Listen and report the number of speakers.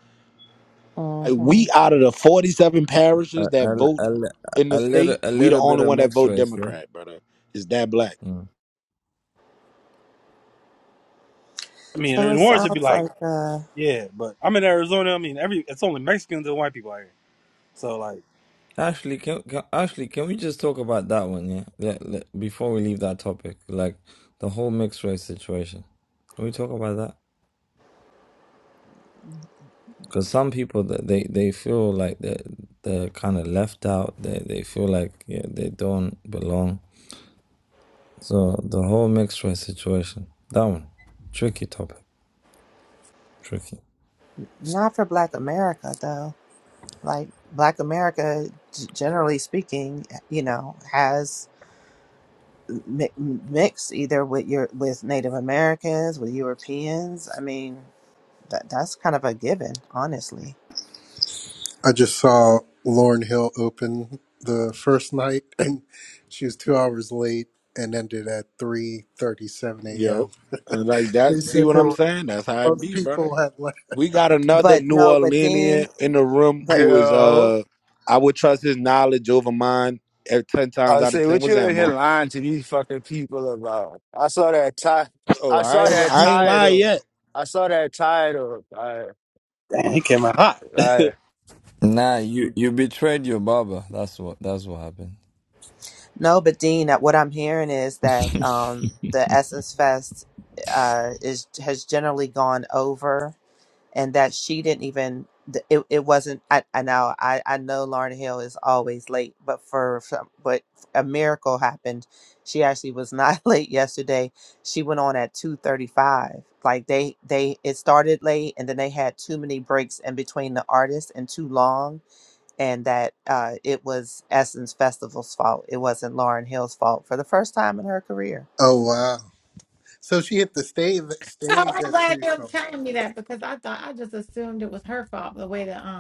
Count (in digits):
7